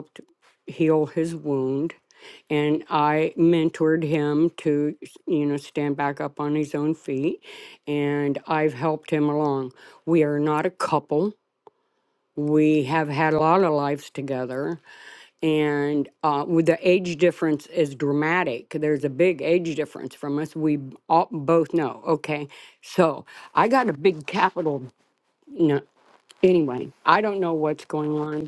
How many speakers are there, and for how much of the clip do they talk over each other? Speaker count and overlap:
1, no overlap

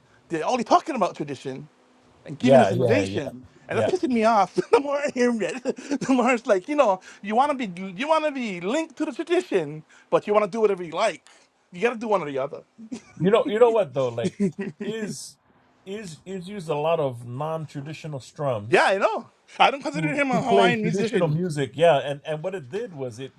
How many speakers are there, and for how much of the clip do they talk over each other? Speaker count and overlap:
2, about 11%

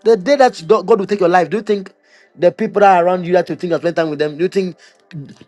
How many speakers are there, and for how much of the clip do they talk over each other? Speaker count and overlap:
1, no overlap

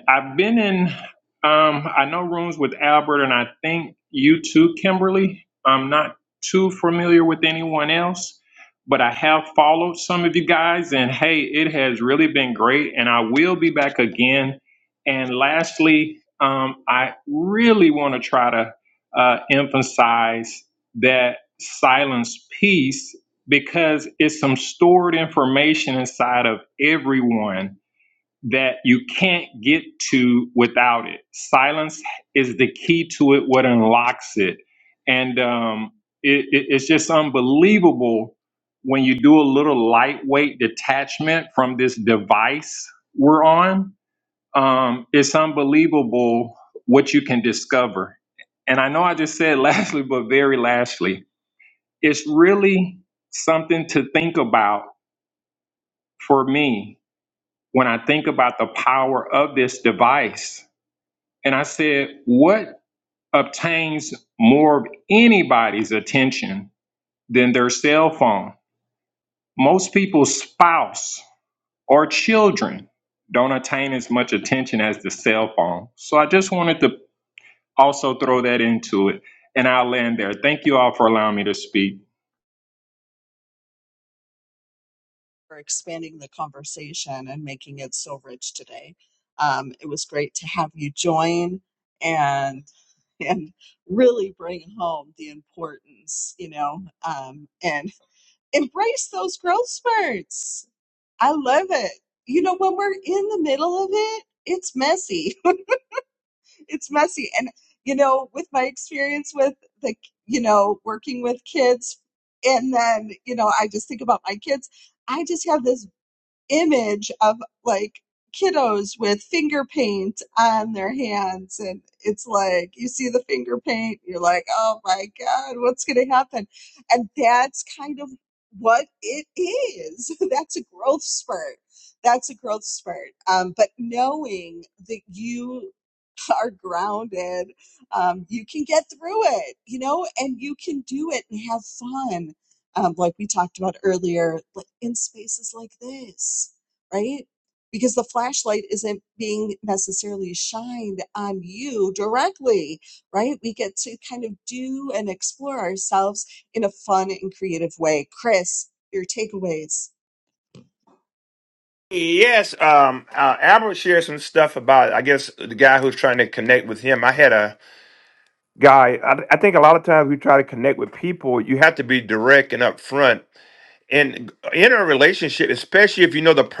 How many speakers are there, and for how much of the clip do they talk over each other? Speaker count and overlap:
3, no overlap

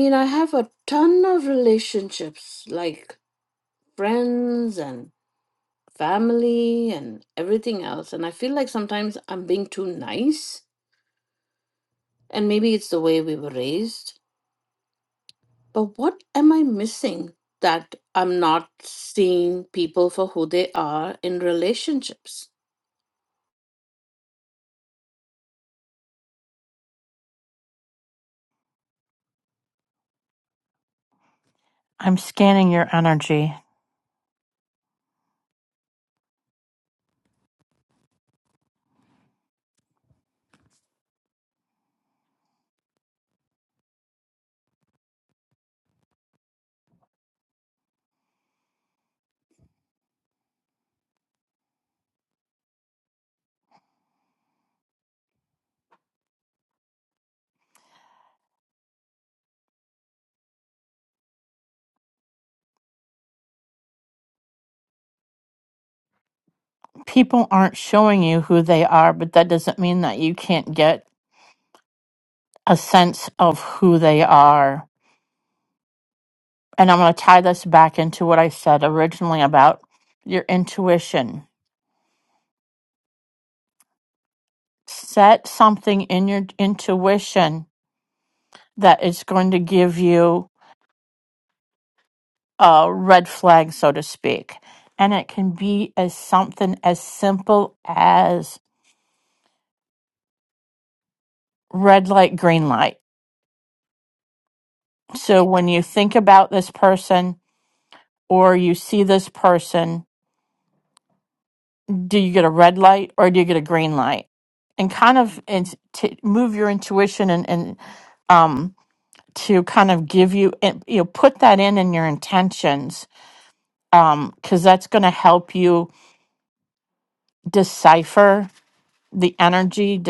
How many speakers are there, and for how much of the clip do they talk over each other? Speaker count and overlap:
2, no overlap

